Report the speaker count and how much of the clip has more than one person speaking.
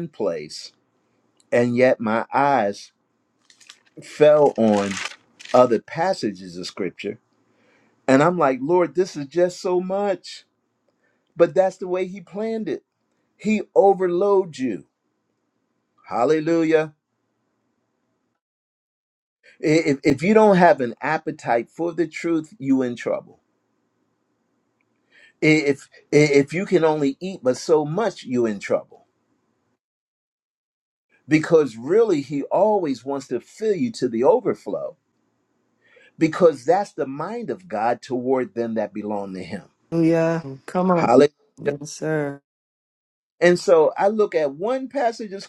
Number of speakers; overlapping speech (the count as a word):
two, under 1%